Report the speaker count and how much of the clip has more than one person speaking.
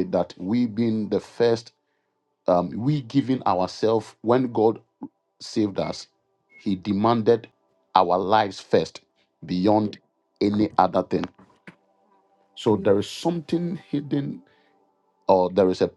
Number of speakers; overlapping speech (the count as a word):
one, no overlap